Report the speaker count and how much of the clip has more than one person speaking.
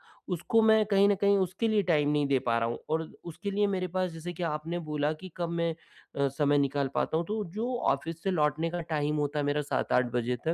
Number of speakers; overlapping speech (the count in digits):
1, no overlap